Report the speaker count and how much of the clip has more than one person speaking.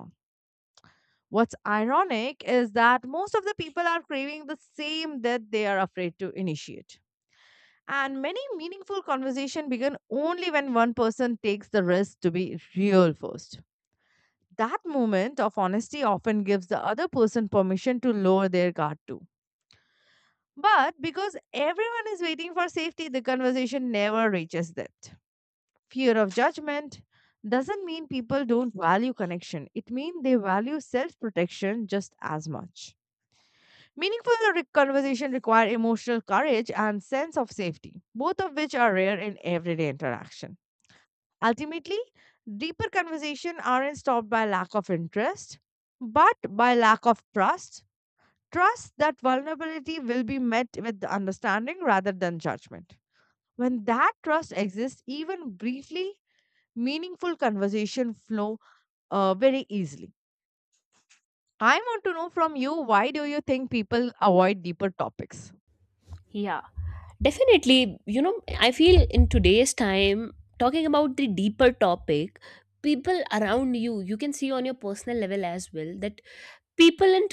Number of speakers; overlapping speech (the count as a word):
two, no overlap